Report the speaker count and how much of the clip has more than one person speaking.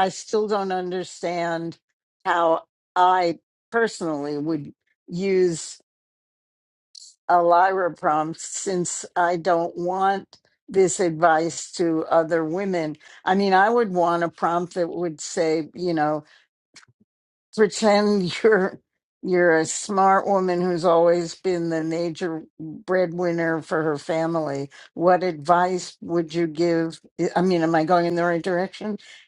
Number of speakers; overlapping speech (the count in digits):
1, no overlap